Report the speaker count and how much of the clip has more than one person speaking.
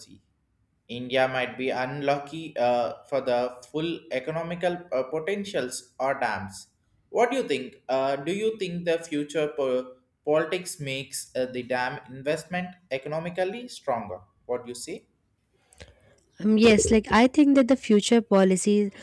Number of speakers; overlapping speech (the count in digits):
2, no overlap